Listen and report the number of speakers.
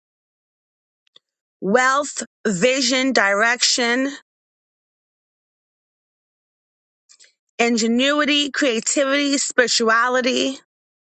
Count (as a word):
one